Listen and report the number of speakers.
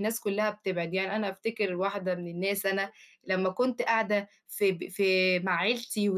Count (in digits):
1